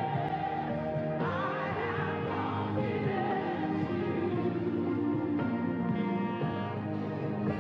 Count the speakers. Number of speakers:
zero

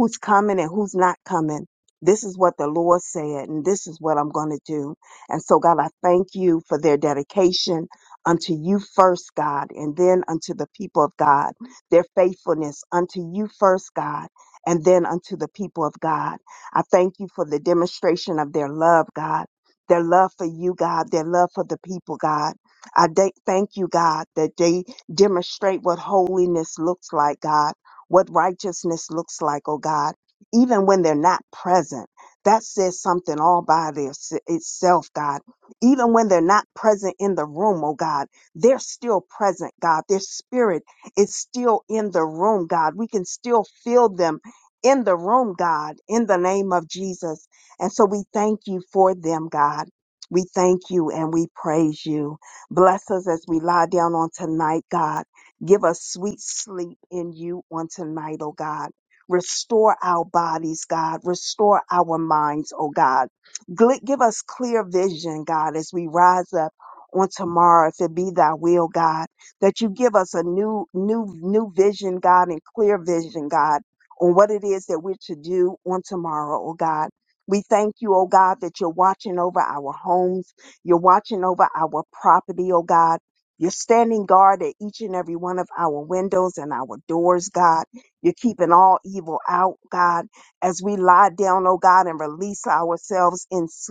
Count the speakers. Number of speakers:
one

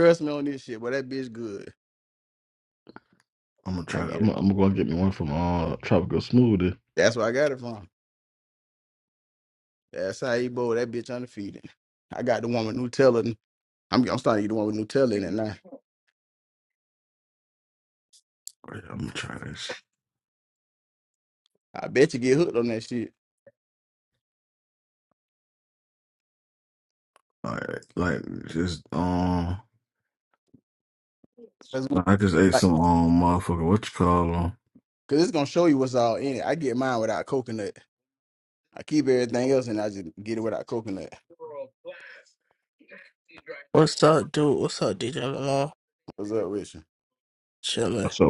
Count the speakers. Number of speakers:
three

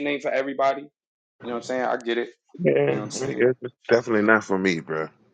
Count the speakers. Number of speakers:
two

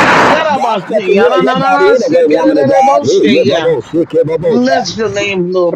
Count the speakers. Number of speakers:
two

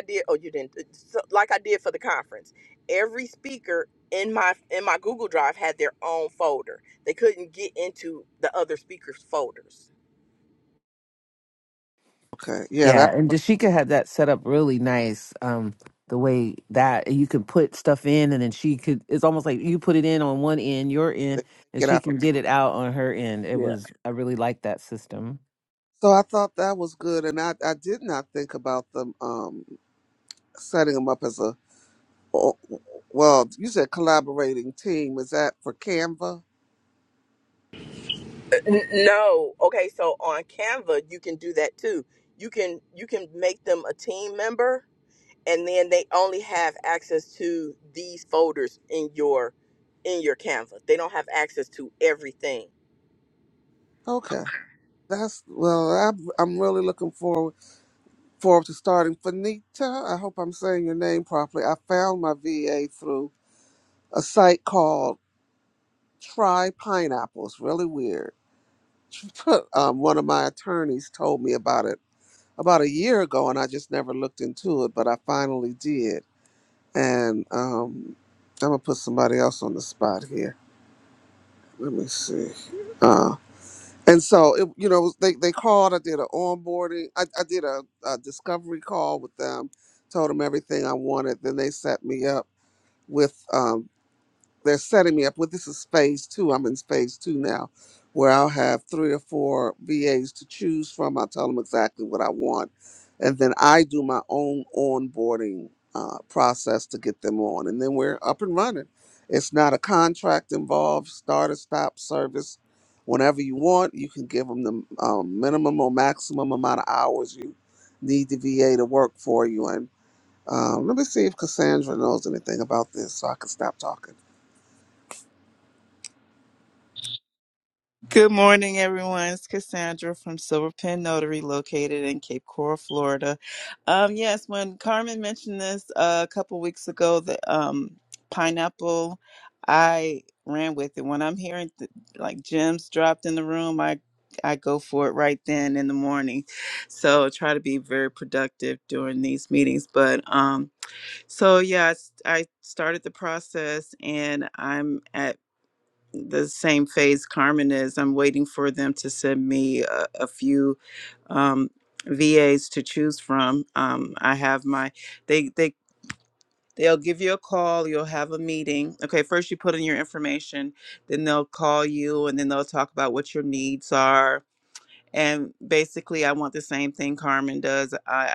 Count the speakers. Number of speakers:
four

